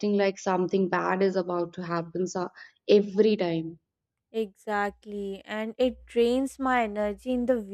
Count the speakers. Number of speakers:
2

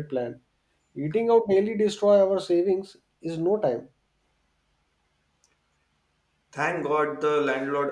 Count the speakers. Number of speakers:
2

